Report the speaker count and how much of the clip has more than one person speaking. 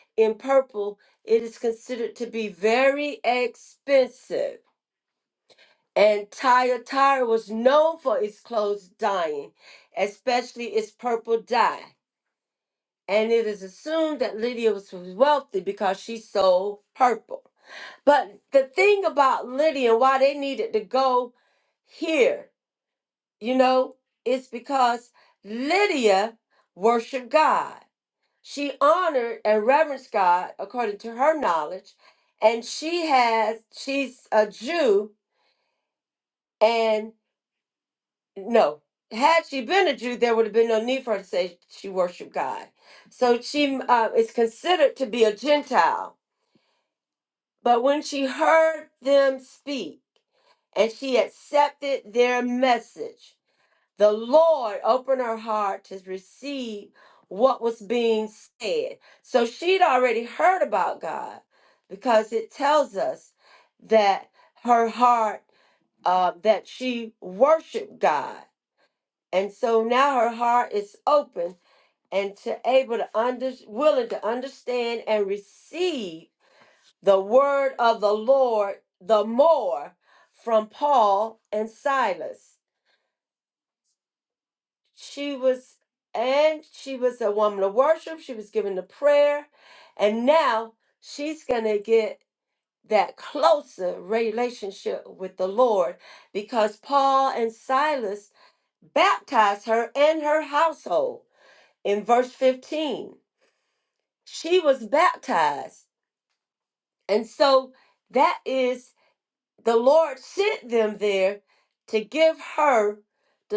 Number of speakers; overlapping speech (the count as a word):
one, no overlap